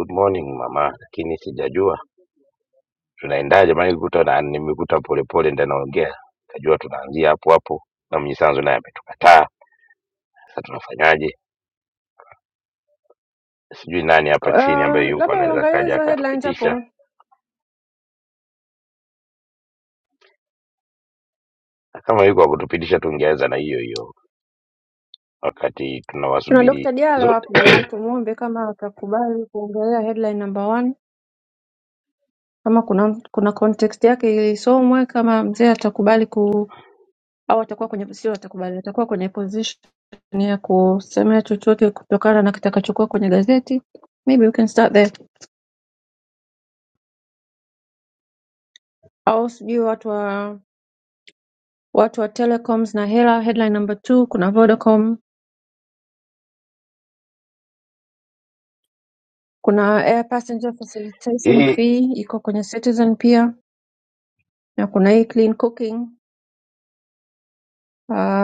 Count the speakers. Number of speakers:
2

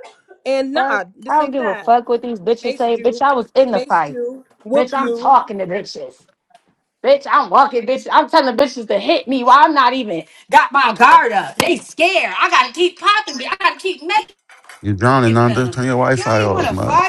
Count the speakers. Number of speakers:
3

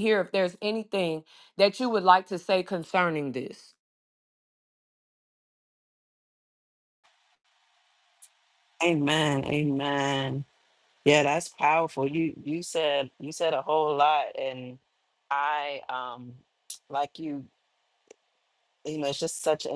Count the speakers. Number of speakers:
2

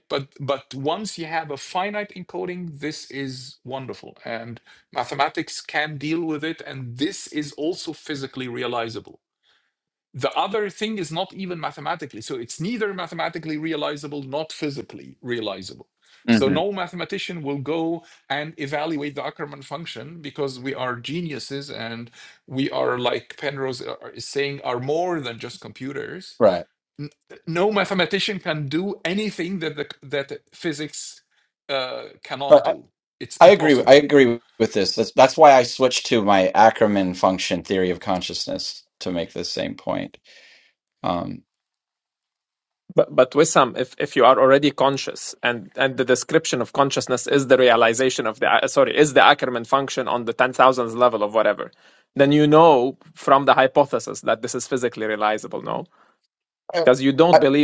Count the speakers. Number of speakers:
3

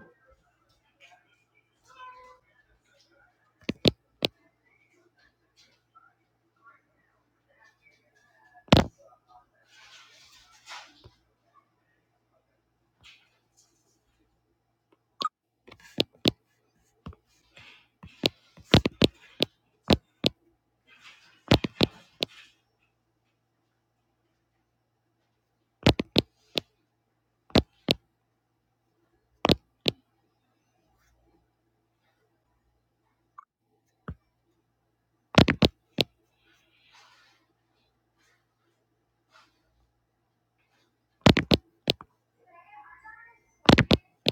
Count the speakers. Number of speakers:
0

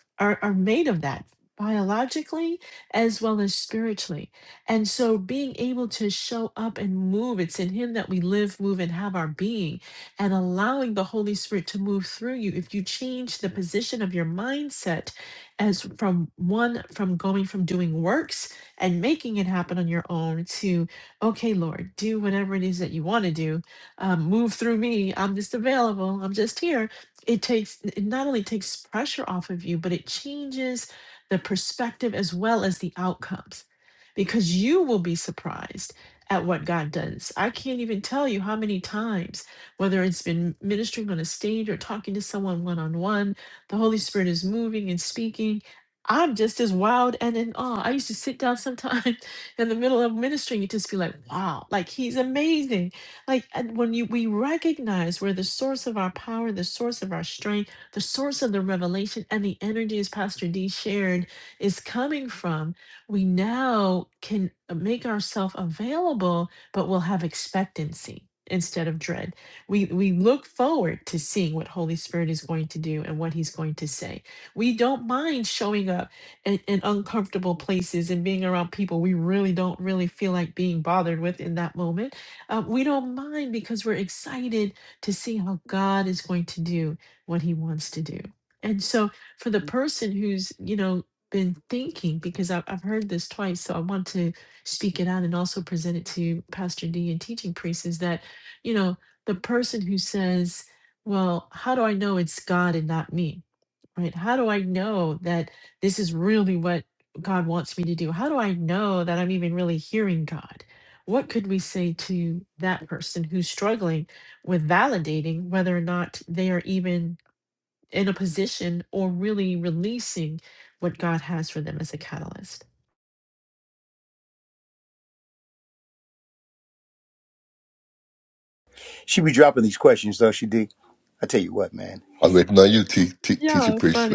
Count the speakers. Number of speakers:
3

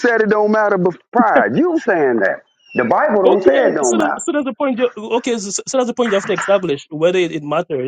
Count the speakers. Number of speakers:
2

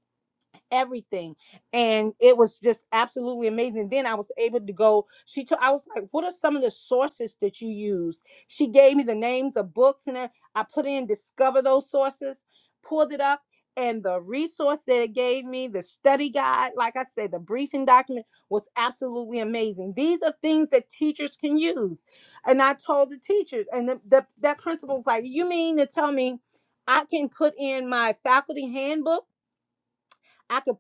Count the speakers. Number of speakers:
1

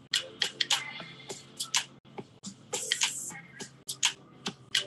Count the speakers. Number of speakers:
0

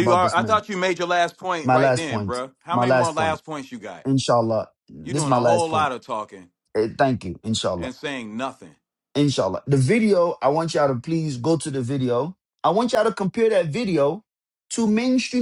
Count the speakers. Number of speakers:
2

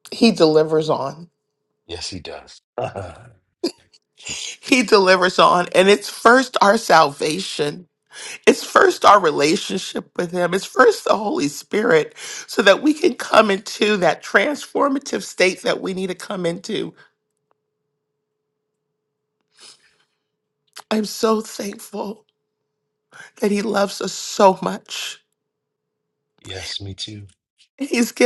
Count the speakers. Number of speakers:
2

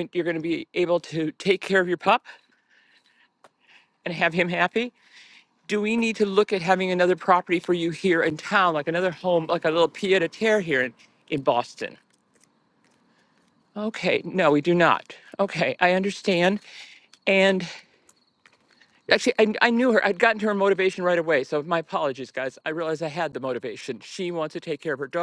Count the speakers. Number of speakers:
1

